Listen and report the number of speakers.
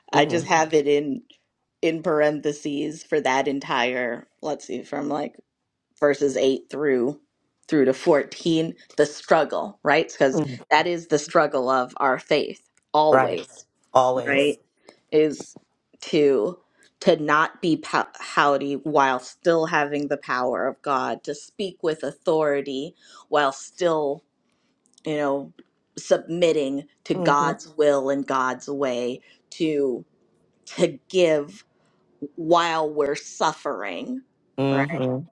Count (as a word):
two